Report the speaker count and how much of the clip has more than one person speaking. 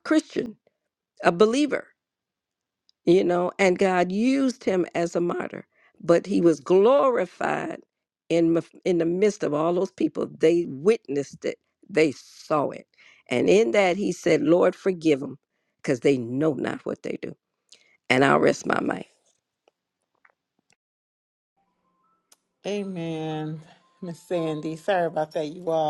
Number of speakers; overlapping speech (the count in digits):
2, no overlap